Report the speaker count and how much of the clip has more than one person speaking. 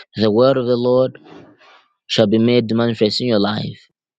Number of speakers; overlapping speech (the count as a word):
one, no overlap